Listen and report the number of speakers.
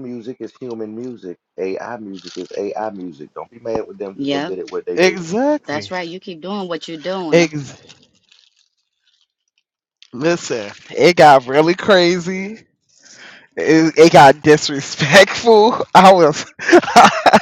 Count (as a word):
three